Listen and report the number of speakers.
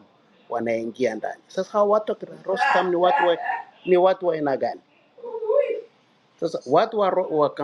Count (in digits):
1